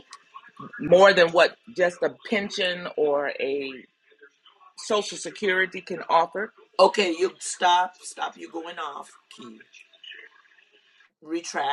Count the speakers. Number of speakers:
2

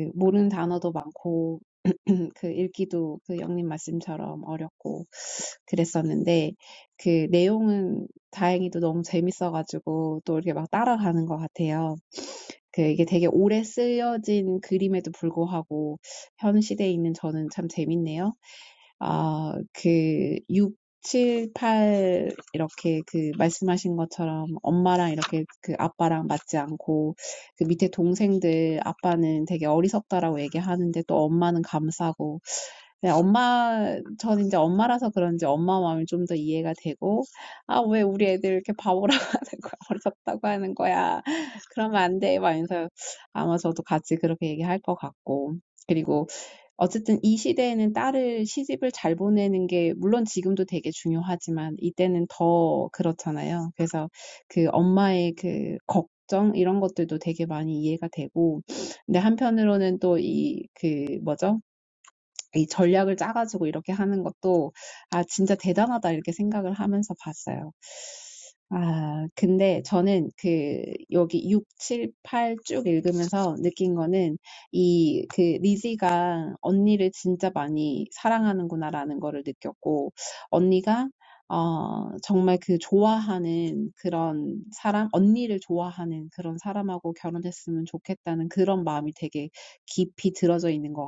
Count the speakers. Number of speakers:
1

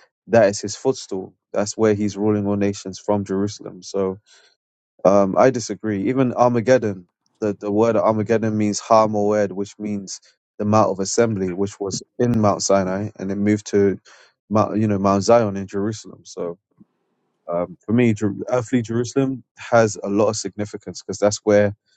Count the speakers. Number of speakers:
1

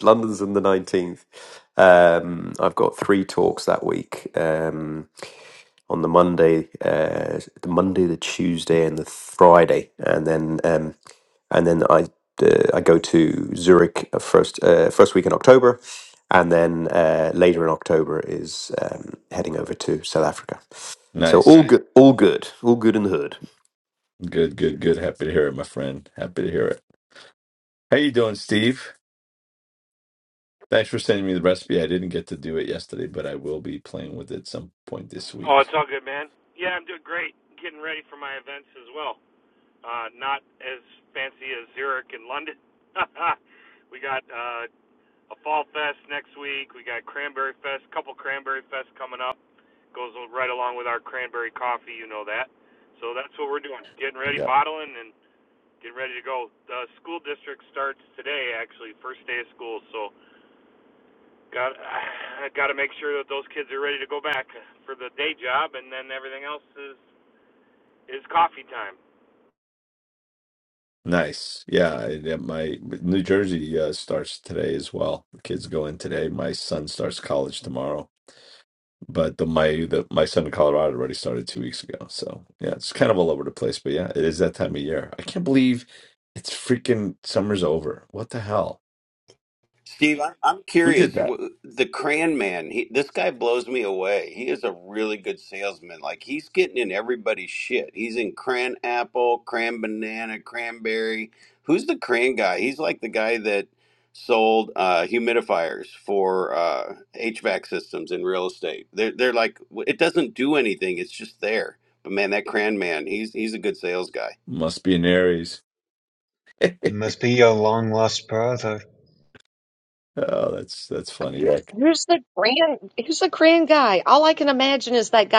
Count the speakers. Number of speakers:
6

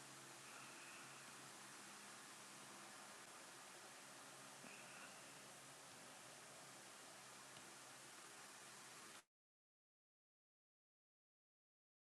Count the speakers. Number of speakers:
0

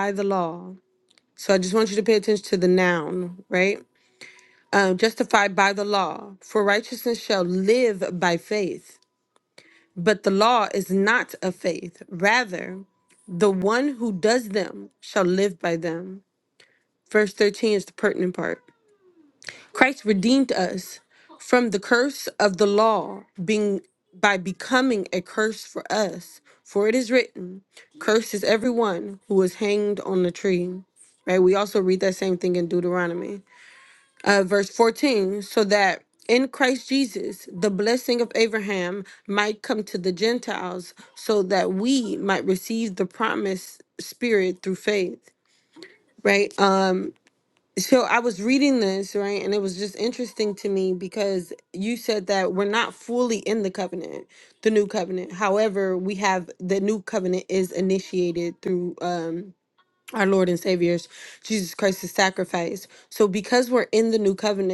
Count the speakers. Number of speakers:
1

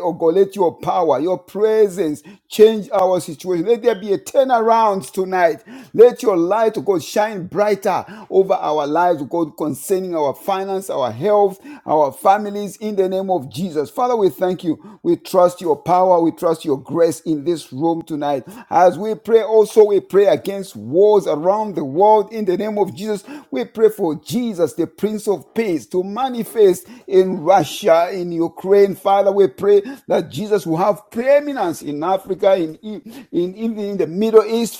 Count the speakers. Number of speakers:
1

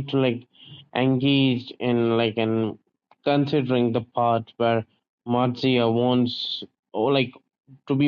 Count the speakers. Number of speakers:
1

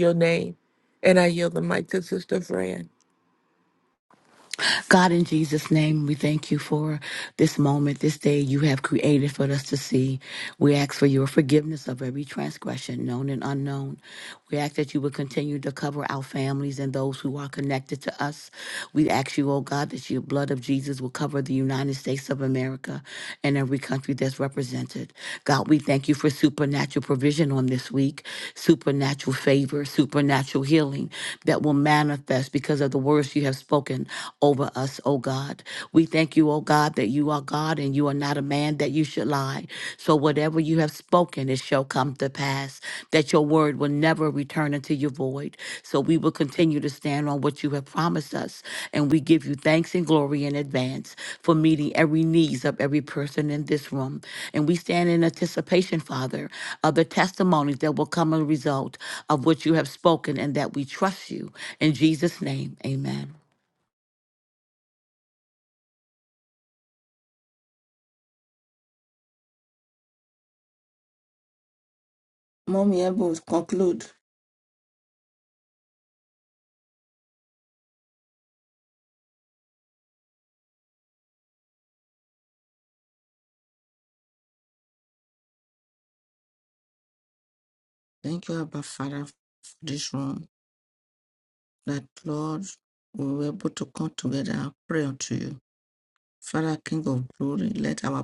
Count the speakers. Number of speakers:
3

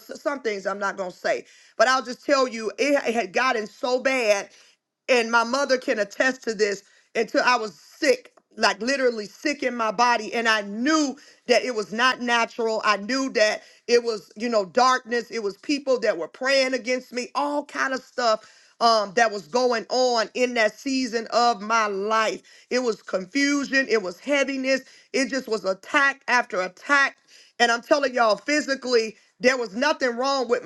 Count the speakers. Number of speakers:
1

